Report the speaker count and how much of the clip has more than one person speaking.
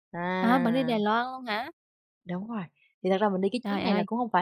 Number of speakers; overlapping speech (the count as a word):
two, about 22%